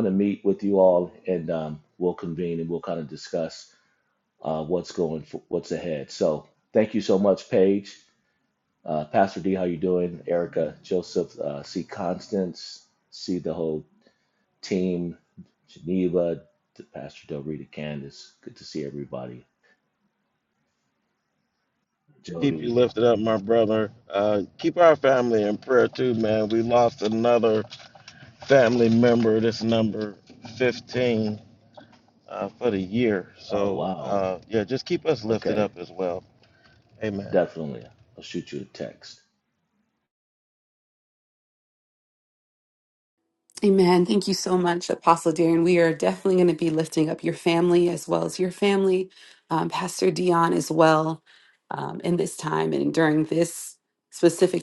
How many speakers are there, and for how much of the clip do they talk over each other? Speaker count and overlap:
3, about 3%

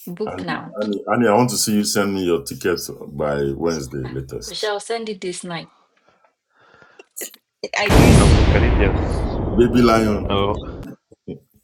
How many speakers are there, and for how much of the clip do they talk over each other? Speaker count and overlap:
3, about 10%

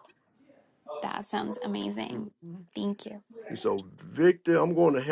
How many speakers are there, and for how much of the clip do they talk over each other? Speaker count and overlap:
2, about 3%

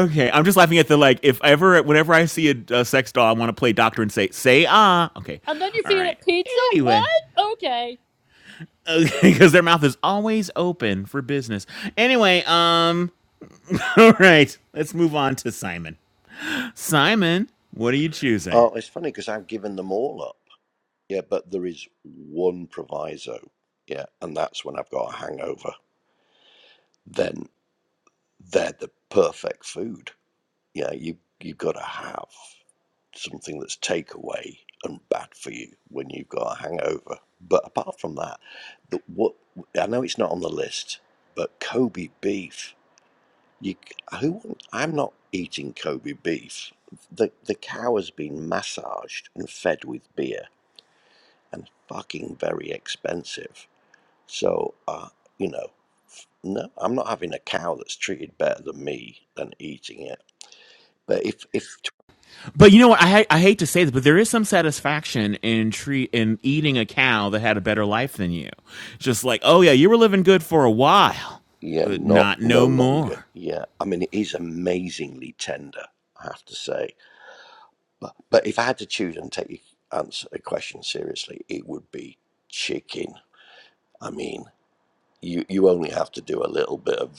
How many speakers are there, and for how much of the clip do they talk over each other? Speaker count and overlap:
3, about 2%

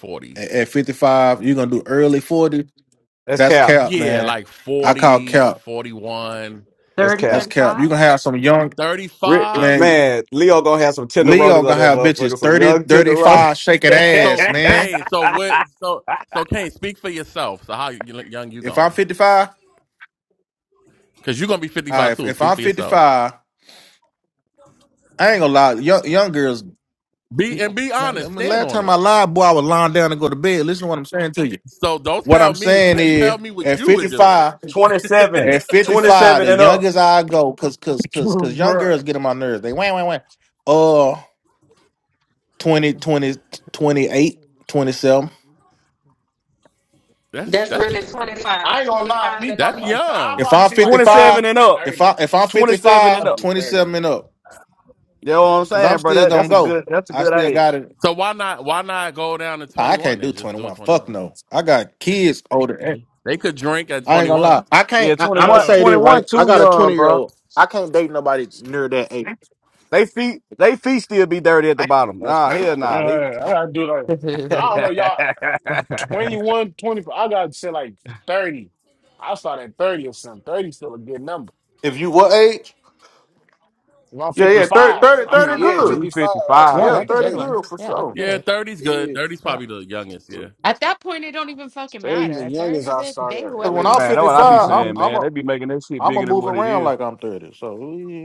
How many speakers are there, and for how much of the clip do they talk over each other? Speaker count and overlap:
6, about 33%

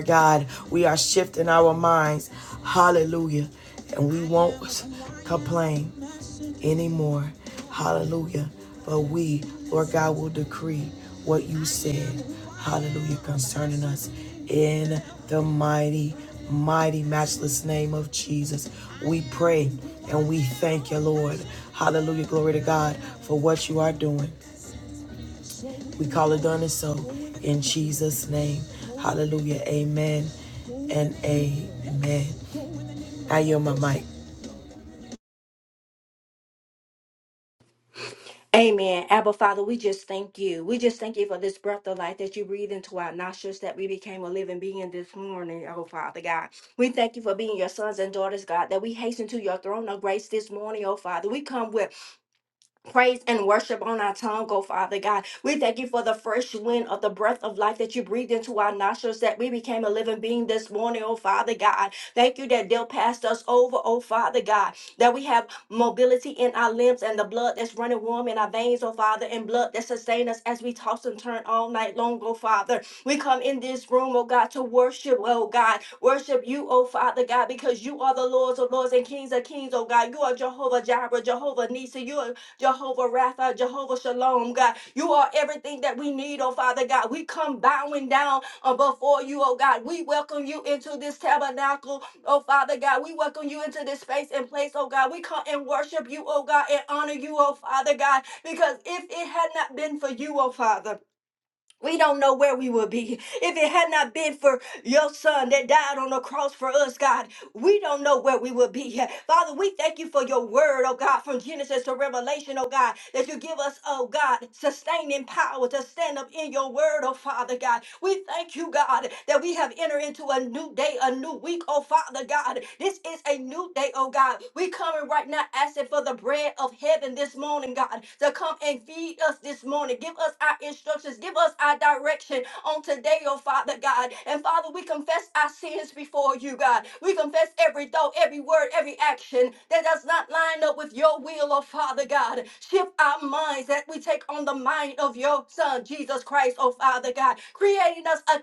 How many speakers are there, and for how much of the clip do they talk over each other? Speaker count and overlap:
2, no overlap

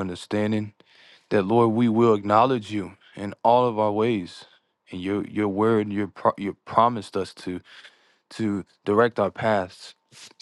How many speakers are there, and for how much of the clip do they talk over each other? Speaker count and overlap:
1, no overlap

